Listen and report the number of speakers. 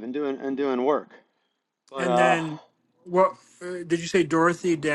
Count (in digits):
2